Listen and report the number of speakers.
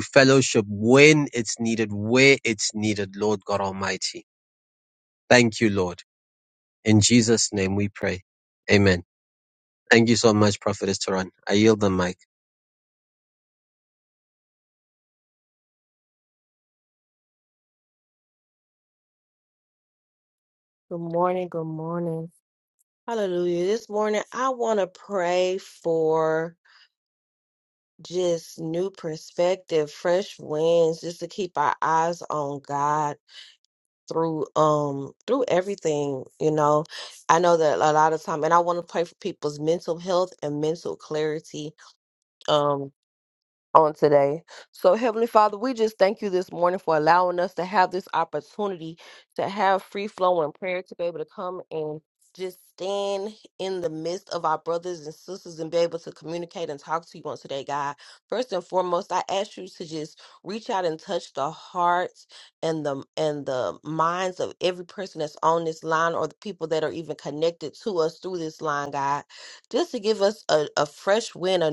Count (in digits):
2